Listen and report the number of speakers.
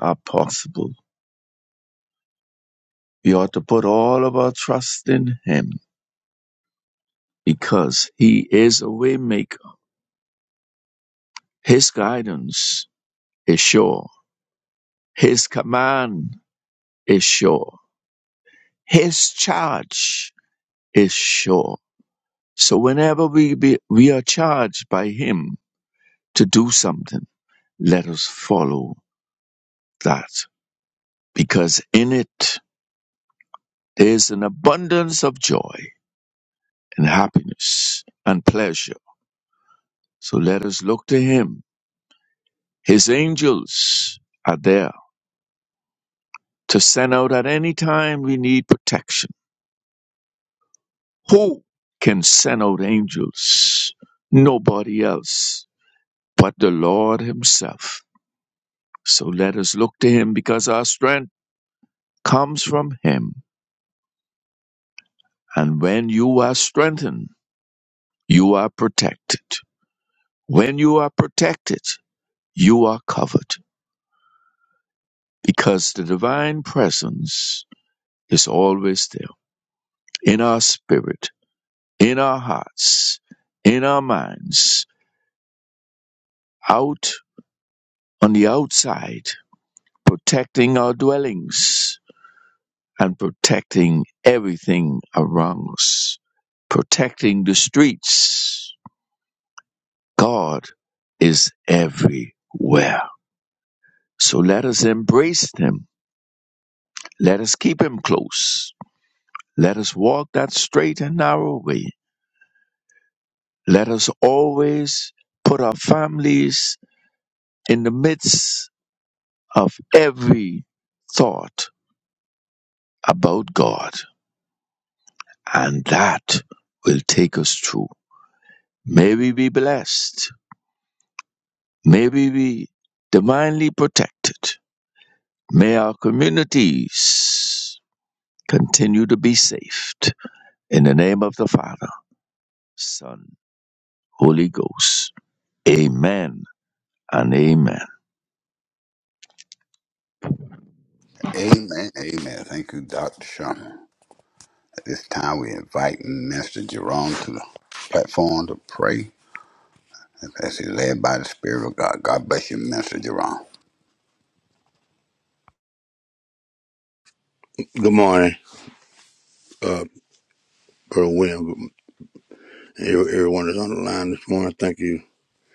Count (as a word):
three